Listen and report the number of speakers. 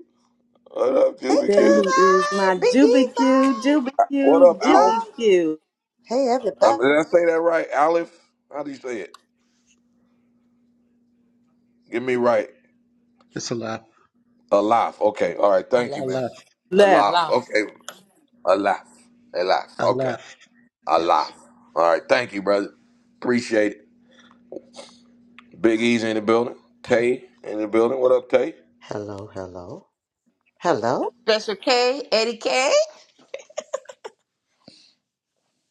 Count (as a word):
five